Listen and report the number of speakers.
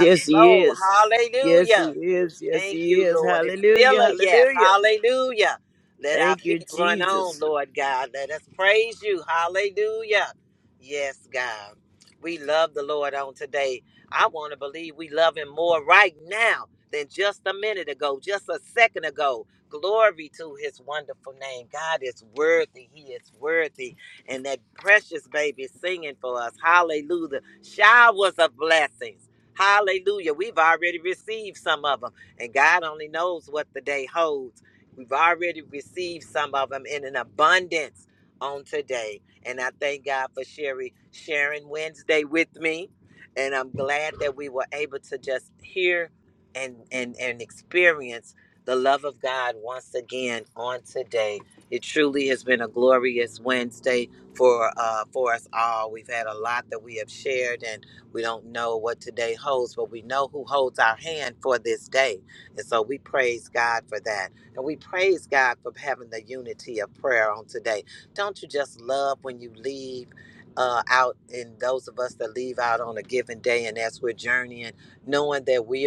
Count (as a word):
two